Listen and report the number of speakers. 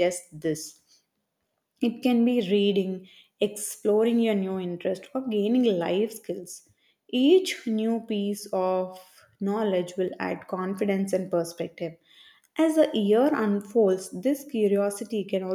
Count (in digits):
1